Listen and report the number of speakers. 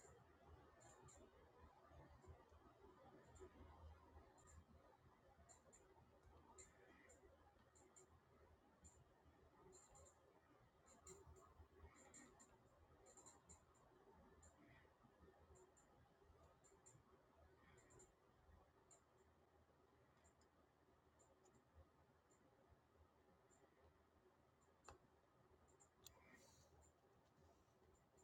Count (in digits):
0